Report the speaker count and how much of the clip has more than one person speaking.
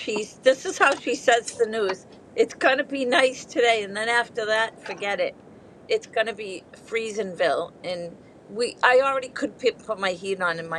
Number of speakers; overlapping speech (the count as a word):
one, no overlap